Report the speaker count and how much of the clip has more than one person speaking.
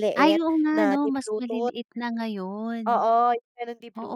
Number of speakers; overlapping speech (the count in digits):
2, about 37%